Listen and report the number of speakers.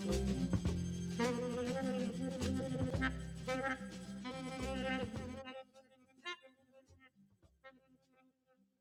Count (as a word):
zero